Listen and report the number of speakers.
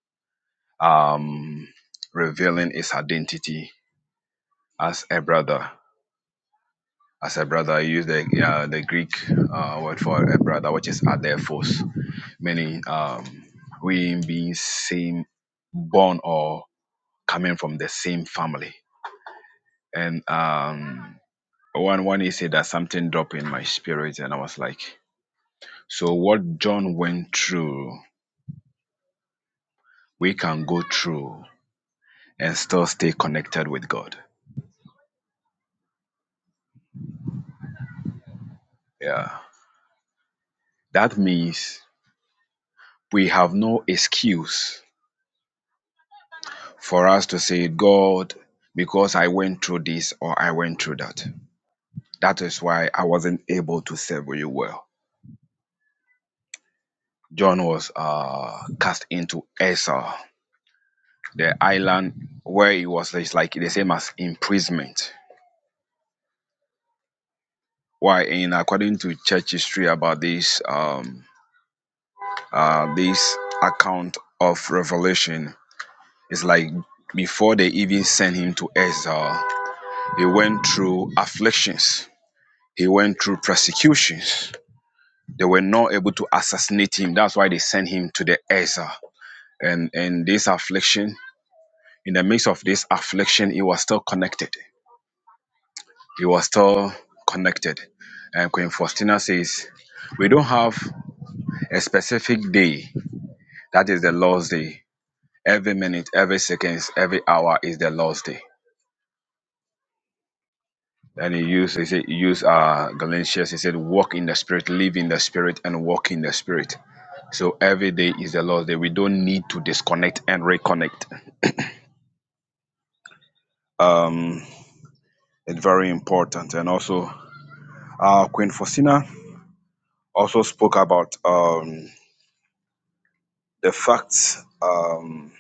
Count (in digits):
1